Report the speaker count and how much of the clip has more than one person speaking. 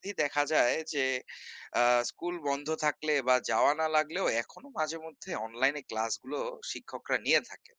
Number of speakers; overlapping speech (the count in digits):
1, no overlap